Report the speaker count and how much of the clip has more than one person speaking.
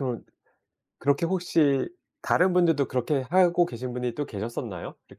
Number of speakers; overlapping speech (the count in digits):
1, no overlap